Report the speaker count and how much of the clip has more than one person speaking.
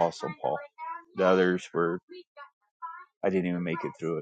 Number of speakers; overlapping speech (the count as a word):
one, no overlap